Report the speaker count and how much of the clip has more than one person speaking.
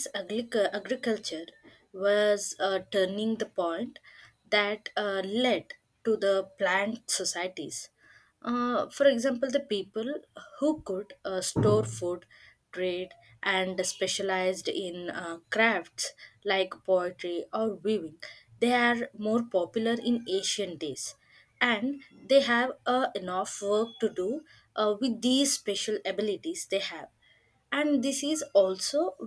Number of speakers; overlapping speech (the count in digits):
1, no overlap